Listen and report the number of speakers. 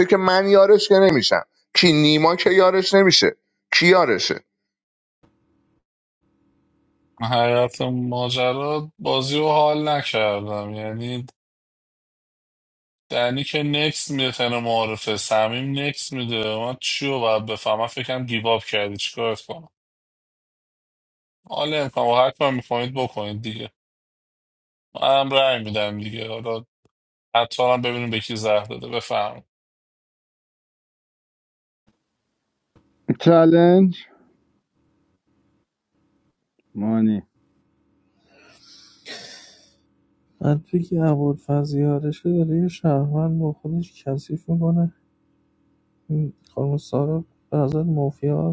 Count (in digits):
4